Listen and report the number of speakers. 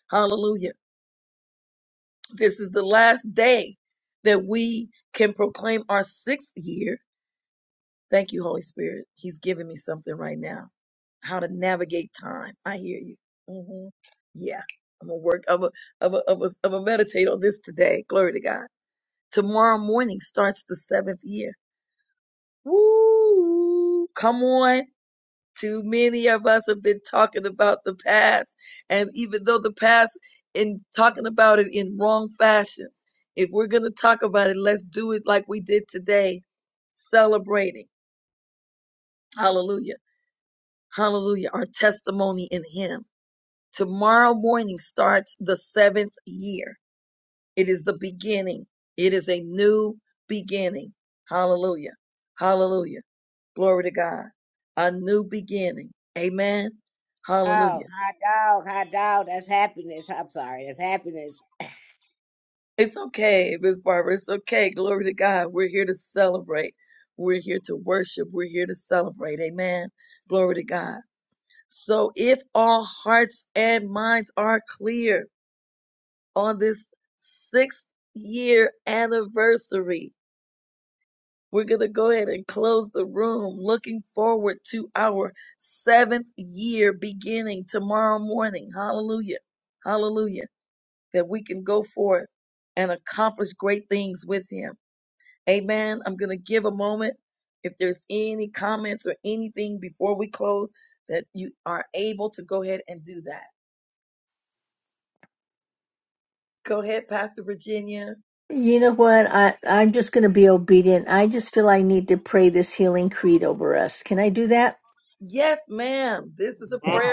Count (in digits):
3